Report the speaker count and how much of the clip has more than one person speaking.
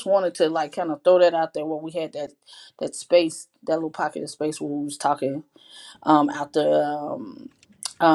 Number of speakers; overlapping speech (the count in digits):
1, no overlap